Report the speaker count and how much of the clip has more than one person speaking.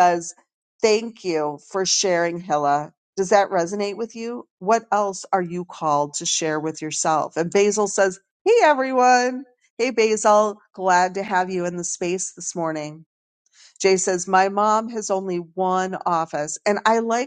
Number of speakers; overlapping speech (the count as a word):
one, no overlap